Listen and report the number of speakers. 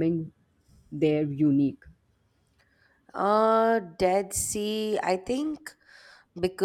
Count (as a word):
two